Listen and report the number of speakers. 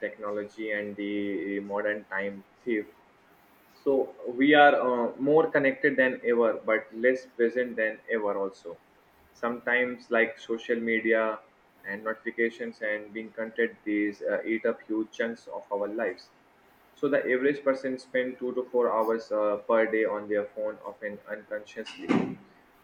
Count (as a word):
one